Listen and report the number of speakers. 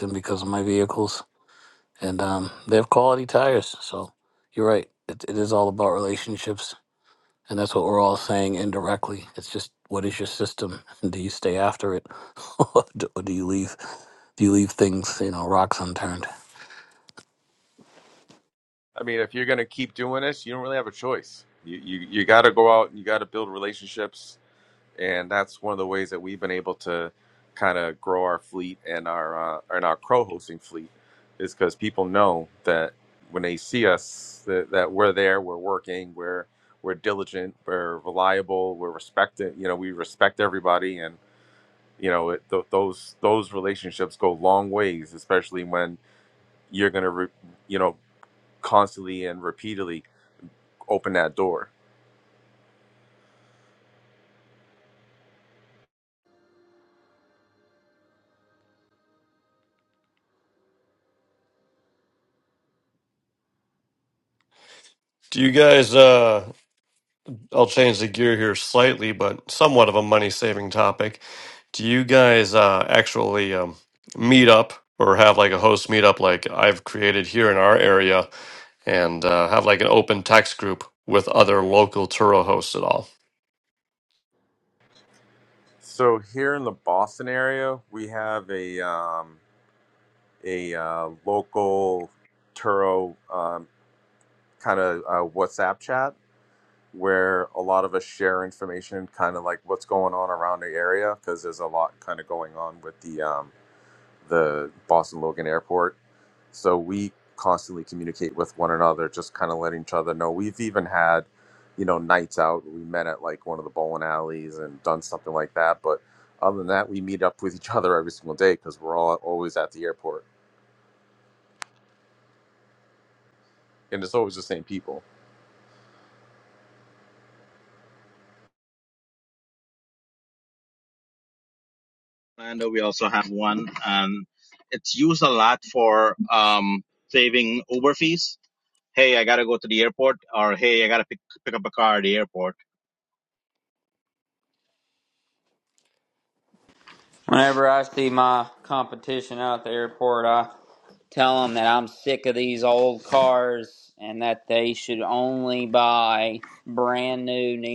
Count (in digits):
5